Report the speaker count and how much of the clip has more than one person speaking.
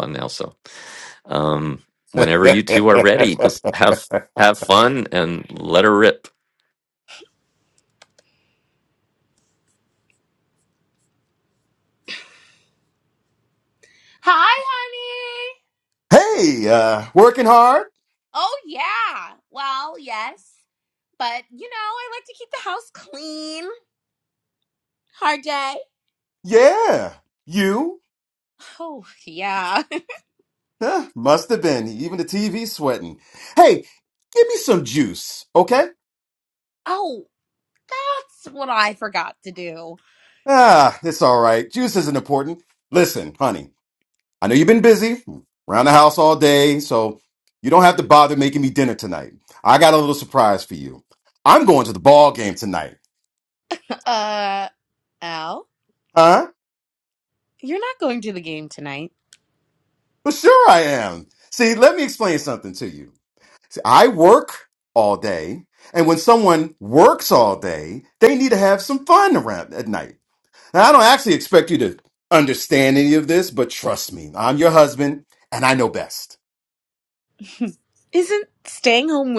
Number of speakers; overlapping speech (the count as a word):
three, no overlap